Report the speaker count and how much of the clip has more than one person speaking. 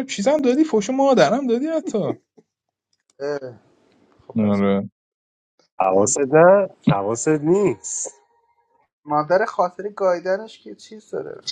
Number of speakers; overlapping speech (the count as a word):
three, about 1%